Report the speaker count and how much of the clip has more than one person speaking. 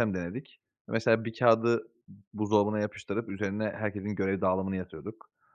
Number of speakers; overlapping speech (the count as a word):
one, no overlap